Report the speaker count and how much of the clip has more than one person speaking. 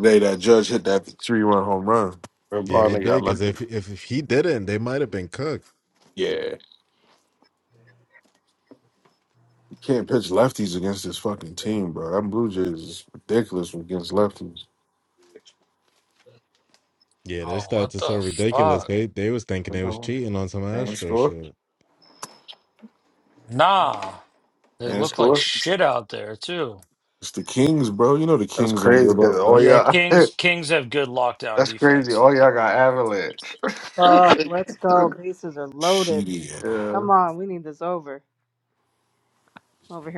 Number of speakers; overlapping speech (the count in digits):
5, about 16%